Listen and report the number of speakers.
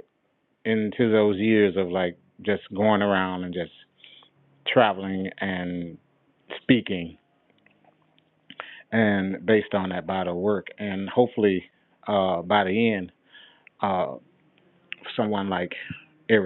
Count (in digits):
1